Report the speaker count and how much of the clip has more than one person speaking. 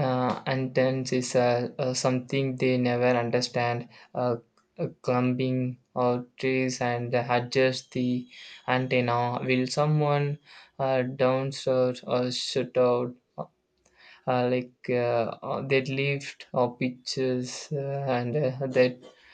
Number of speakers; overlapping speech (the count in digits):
1, no overlap